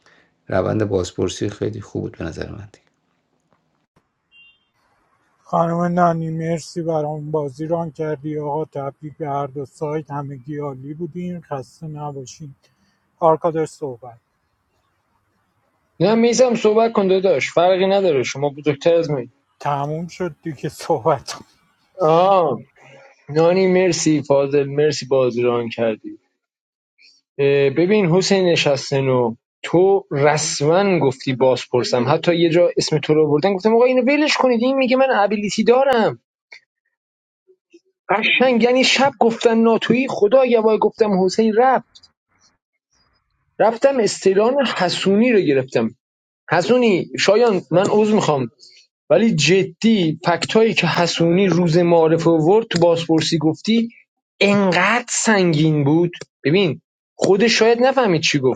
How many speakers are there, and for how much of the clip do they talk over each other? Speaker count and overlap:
3, no overlap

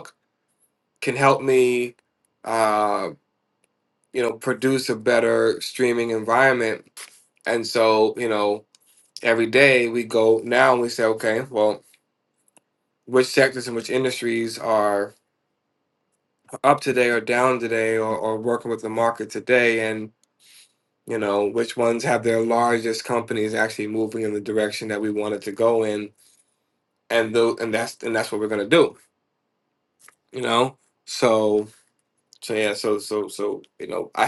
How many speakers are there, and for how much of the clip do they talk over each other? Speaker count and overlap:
1, no overlap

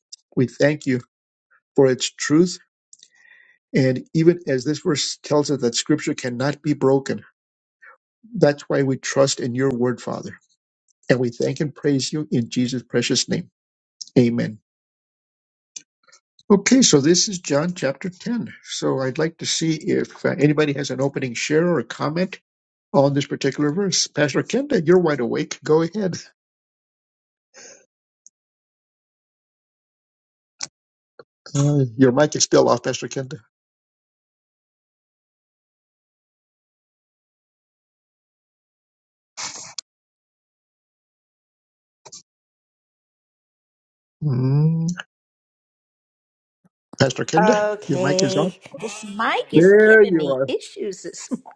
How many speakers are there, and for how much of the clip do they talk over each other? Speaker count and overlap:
2, about 4%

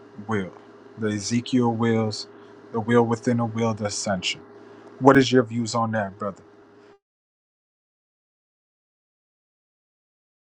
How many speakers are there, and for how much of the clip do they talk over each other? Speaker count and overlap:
1, no overlap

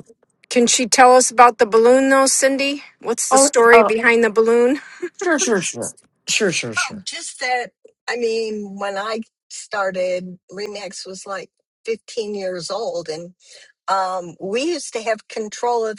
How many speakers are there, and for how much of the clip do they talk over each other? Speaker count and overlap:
3, about 5%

